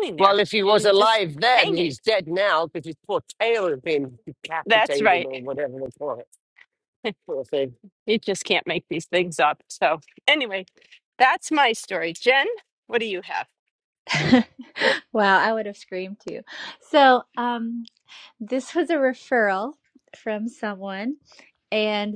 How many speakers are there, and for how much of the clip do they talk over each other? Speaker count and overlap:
three, about 8%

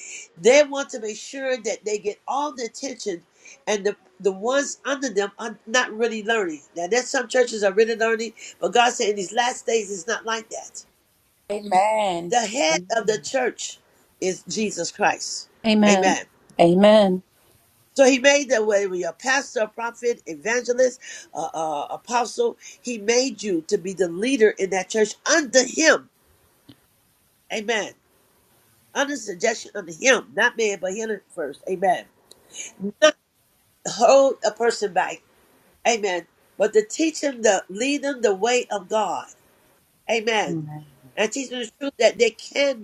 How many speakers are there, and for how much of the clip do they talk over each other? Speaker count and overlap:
three, about 1%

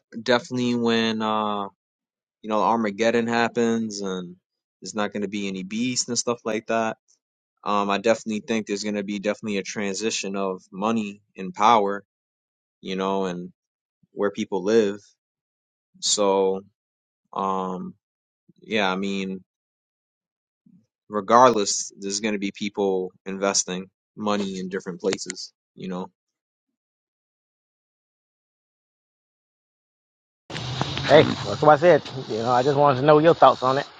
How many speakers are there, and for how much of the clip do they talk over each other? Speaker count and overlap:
two, no overlap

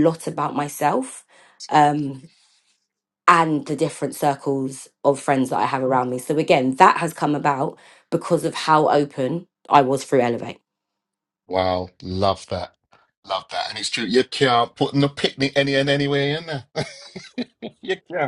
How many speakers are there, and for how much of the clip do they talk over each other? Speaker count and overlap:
two, no overlap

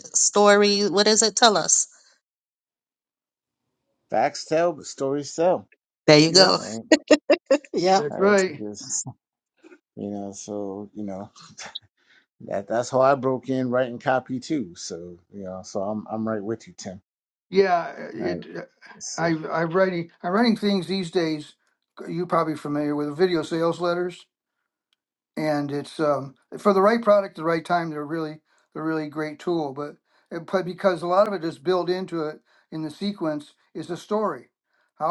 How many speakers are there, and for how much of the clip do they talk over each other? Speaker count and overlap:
three, about 4%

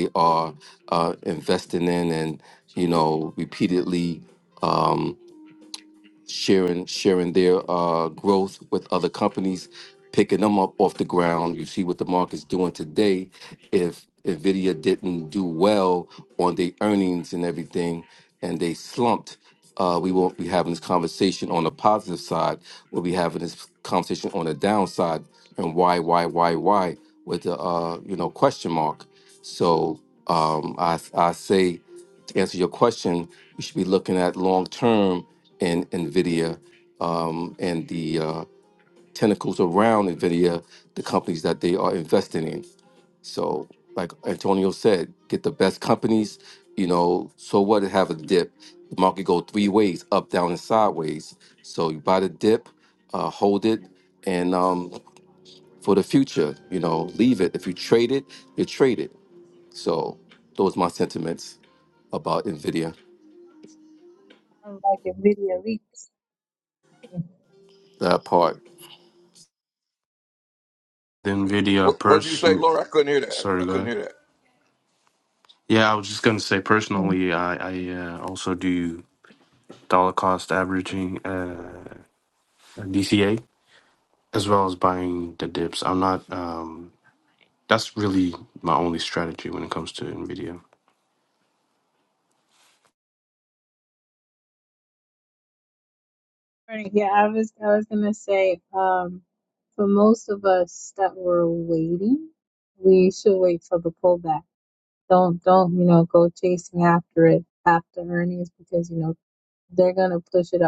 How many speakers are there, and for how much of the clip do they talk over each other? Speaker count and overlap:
four, about 1%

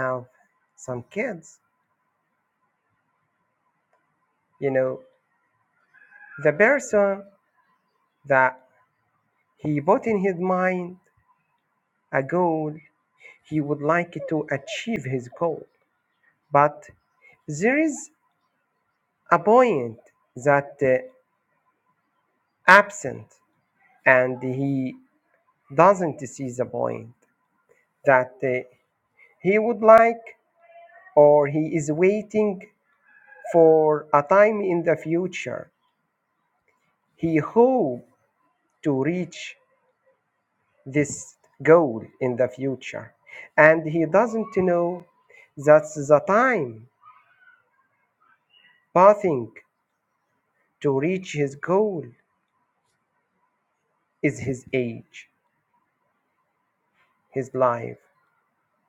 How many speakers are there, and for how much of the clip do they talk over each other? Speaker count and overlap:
one, no overlap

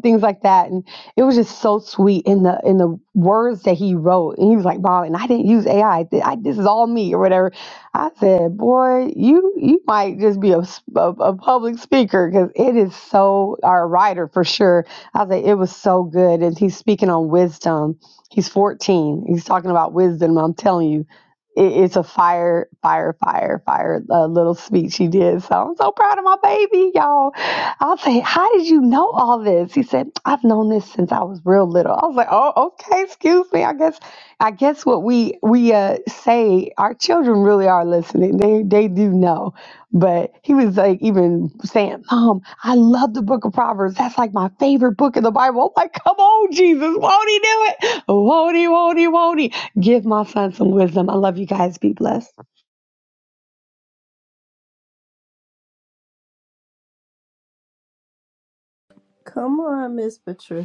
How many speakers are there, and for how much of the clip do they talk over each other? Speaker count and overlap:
two, no overlap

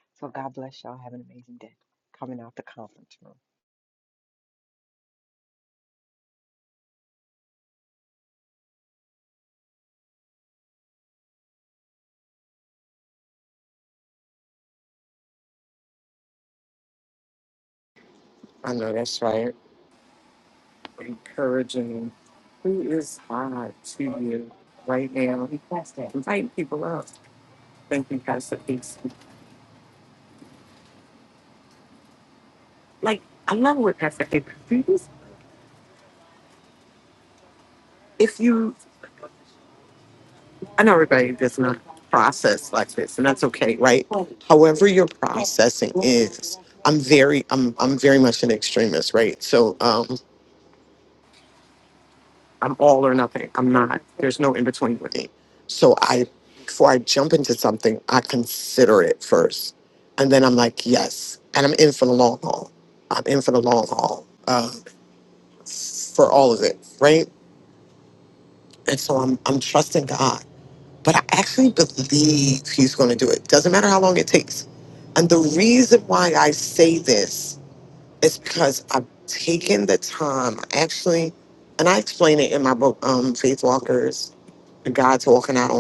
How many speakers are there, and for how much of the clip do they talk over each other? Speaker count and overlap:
two, no overlap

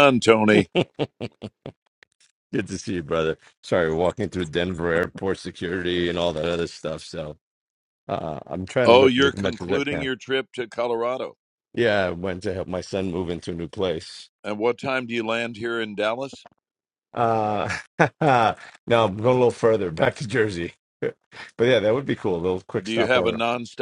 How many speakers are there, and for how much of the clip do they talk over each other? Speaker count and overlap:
two, about 7%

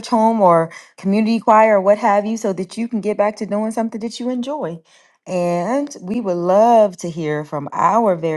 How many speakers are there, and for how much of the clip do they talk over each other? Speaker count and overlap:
one, no overlap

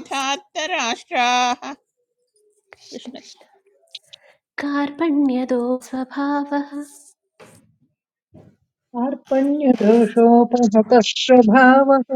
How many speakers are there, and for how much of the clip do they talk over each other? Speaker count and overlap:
three, about 2%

